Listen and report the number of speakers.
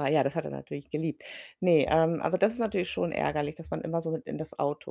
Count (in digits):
1